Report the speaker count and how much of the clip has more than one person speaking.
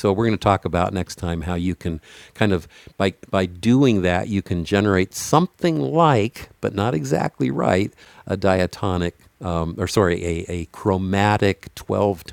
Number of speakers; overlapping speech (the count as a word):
one, no overlap